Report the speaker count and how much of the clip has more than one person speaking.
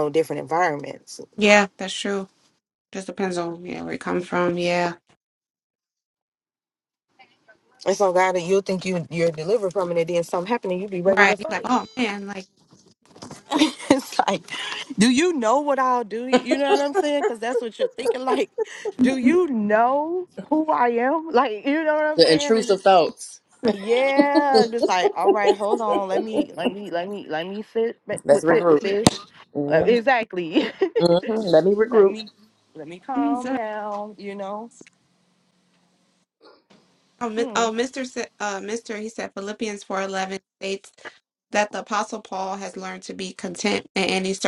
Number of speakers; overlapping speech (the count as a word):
three, about 8%